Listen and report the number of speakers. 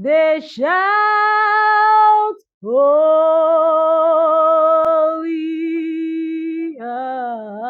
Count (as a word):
one